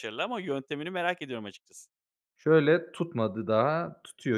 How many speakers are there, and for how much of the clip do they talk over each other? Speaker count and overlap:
two, no overlap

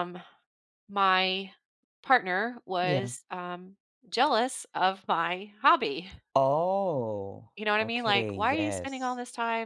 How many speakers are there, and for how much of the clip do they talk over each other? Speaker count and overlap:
two, about 14%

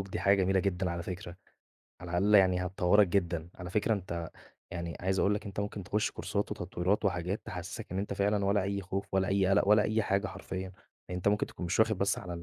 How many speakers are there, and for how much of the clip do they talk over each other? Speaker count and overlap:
one, no overlap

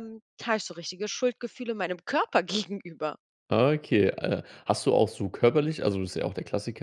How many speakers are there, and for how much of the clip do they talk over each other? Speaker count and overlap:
two, no overlap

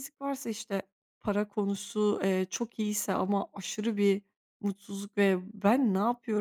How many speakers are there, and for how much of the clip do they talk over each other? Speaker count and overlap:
one, no overlap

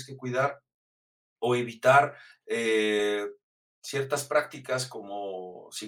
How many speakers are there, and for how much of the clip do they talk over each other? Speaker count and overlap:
one, no overlap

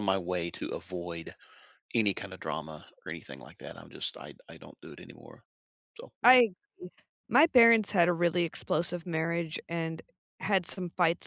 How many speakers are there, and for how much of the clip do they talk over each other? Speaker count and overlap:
two, about 1%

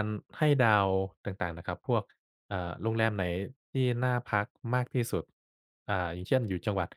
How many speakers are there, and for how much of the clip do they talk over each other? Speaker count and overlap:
one, no overlap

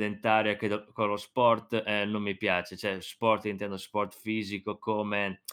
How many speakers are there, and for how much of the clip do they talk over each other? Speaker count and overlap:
one, no overlap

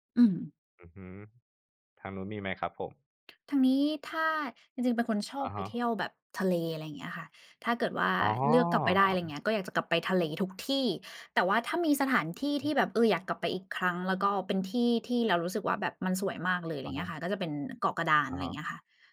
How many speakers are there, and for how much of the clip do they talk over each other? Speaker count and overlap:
two, about 9%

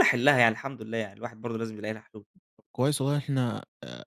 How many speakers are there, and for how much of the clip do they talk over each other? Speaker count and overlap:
two, no overlap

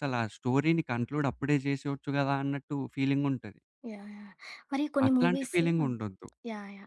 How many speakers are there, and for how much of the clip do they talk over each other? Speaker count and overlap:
two, about 10%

